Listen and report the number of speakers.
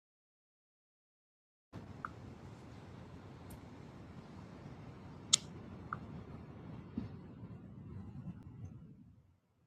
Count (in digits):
0